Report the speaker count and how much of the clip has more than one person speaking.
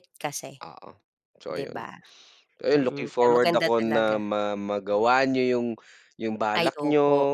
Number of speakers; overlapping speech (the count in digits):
2, about 32%